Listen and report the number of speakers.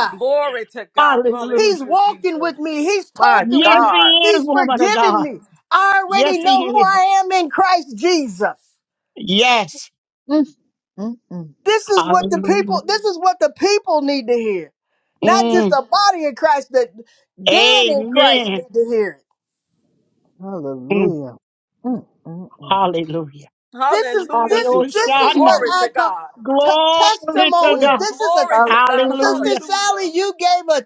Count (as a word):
four